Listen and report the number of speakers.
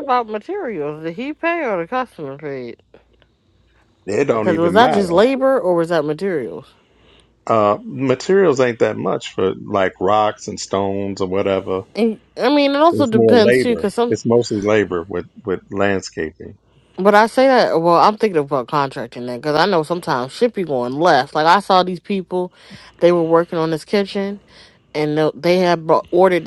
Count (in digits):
2